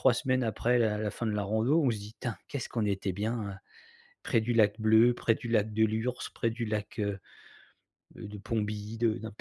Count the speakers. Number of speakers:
1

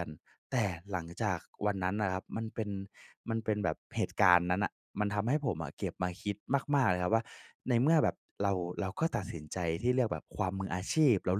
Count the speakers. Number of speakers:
1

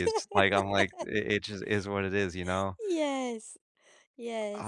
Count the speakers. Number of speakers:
2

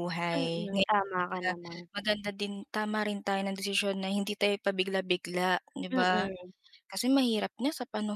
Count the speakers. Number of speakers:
2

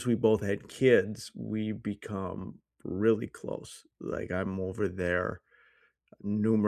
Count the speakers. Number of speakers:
1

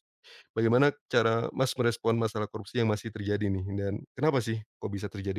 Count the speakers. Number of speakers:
1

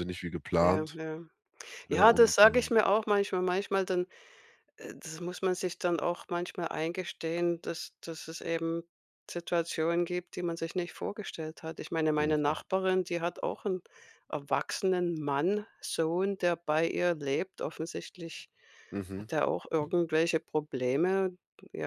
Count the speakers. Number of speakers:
2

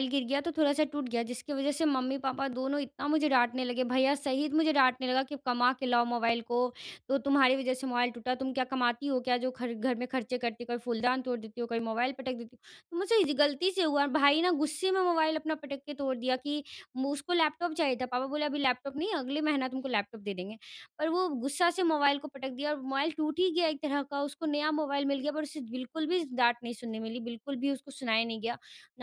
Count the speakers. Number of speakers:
1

